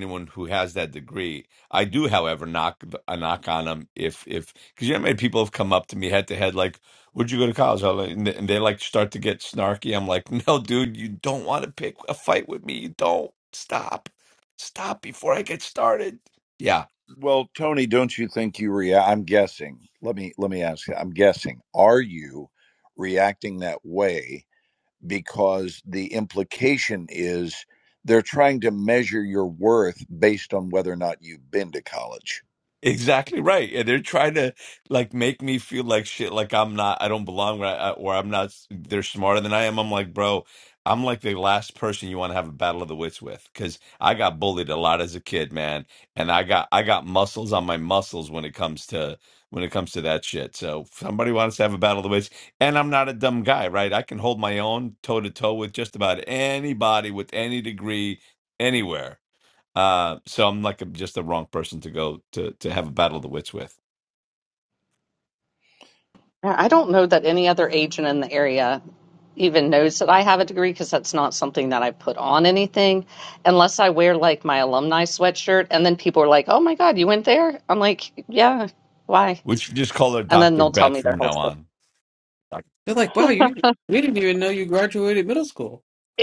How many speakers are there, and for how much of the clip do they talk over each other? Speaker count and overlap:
four, about 1%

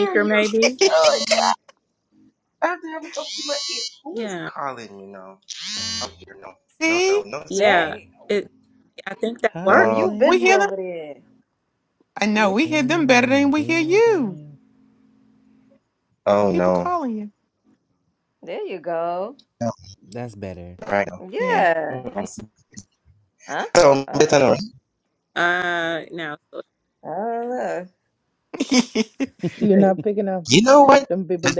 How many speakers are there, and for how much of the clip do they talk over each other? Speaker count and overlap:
six, about 19%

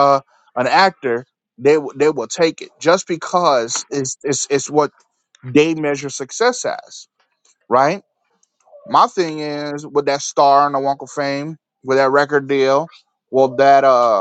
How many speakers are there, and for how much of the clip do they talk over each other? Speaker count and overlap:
one, no overlap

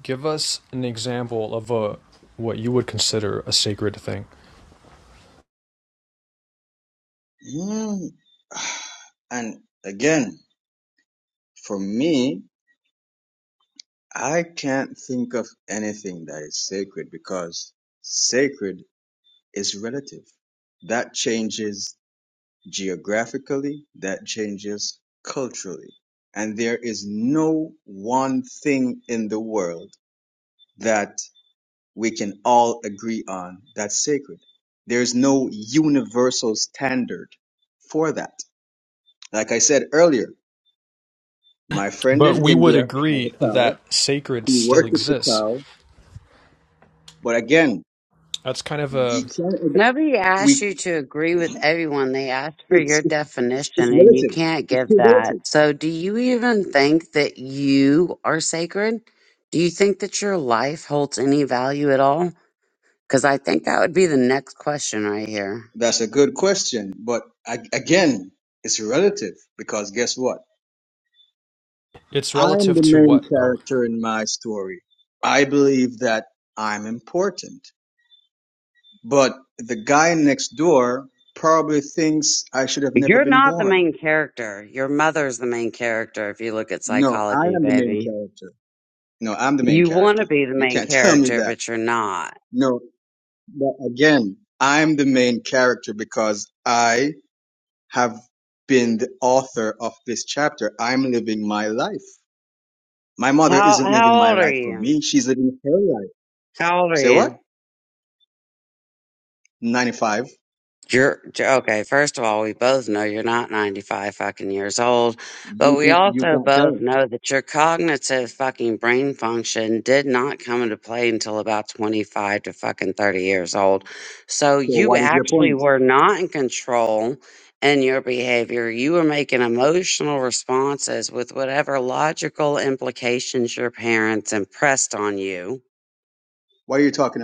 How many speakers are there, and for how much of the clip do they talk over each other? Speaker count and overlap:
three, about 10%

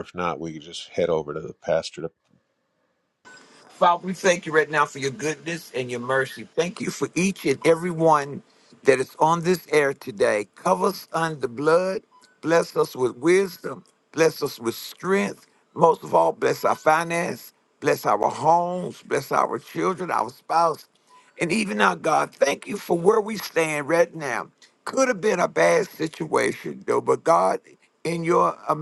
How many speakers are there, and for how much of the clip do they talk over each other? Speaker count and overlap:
two, no overlap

